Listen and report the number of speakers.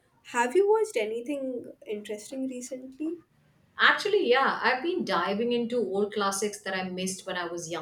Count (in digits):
2